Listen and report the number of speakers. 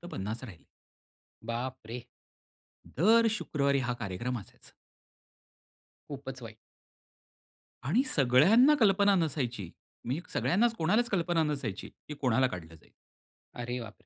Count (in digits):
2